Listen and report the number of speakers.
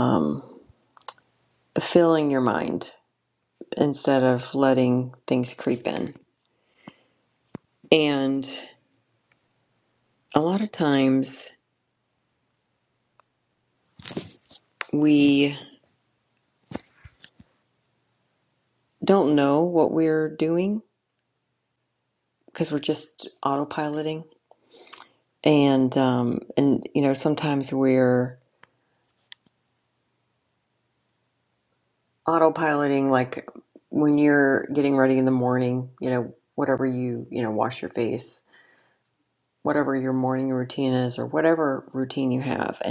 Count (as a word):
one